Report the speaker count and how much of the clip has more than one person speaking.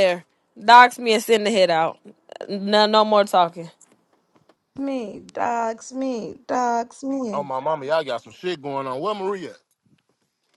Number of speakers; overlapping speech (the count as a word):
three, about 1%